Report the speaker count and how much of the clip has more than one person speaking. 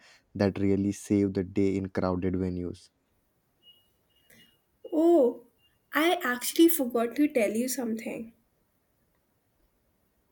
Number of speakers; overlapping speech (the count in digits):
2, no overlap